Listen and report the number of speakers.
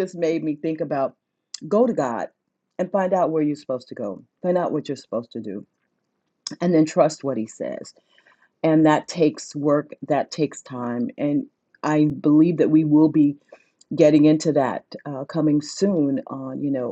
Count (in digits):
1